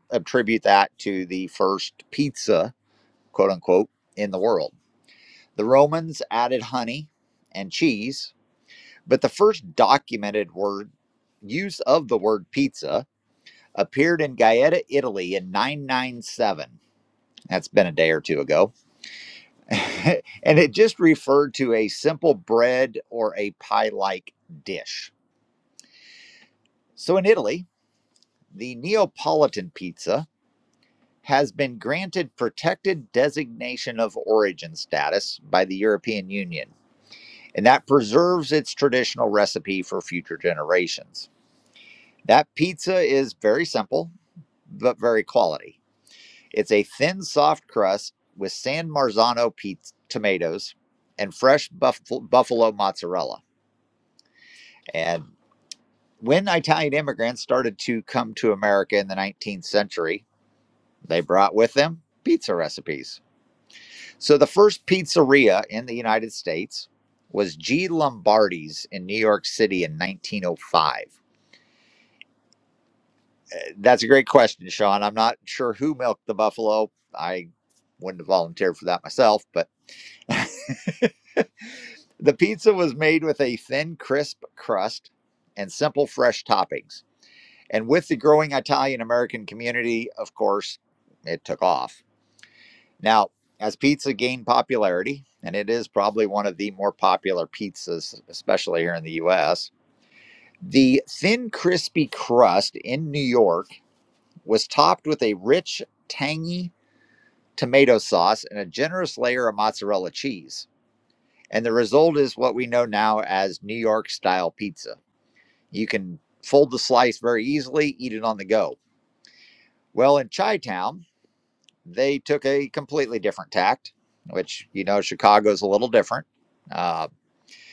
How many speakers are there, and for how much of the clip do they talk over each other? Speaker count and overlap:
1, no overlap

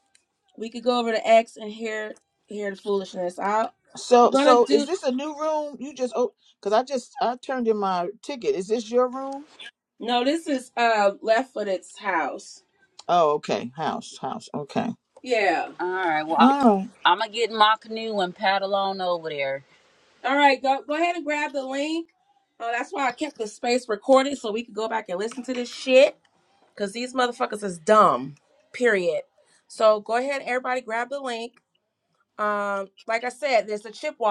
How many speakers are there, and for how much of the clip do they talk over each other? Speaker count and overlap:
3, about 2%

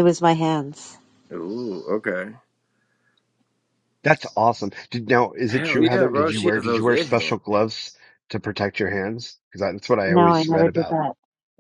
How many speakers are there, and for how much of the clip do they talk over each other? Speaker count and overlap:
3, about 24%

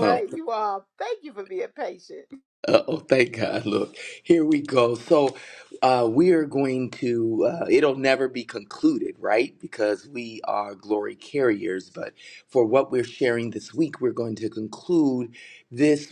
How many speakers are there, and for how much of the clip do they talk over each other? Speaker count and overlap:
2, about 1%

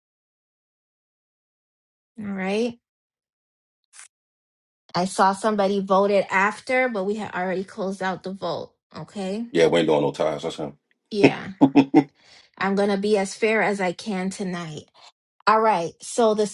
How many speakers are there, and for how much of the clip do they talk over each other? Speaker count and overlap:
2, no overlap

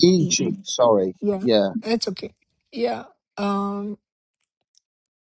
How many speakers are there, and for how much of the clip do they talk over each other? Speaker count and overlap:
2, about 8%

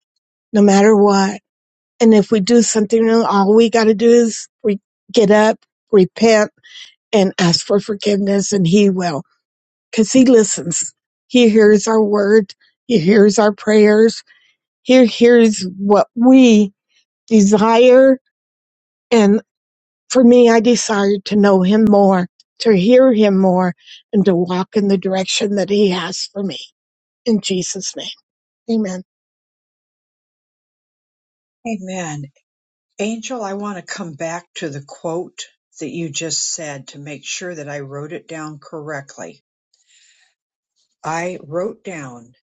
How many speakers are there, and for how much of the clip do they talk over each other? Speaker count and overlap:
2, no overlap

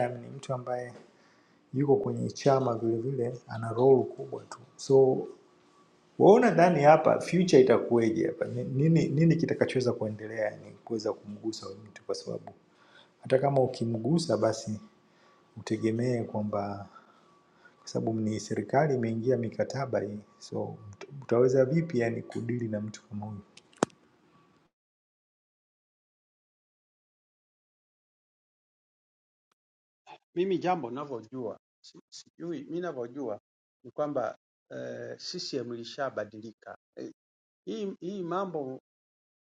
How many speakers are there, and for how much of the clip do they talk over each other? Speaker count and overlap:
2, no overlap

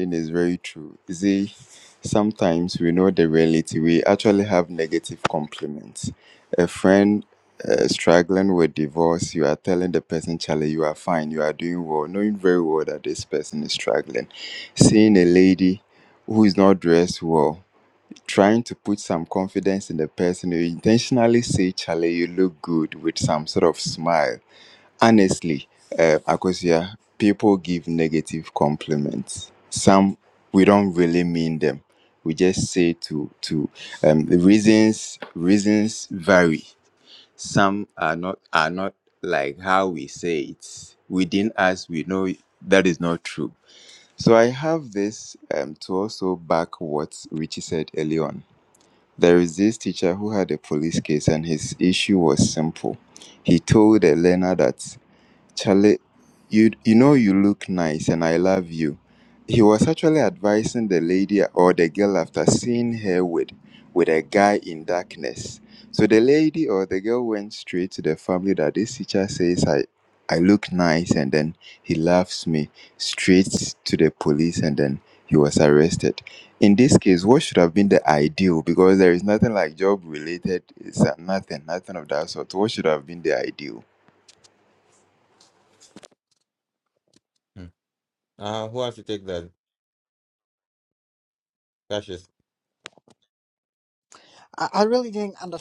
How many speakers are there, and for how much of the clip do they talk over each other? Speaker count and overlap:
3, no overlap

